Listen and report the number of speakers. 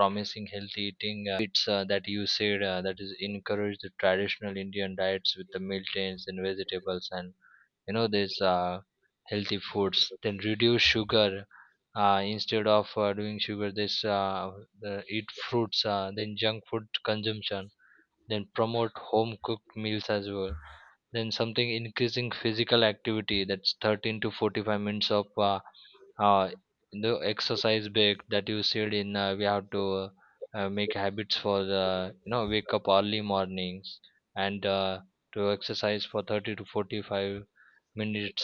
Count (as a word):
one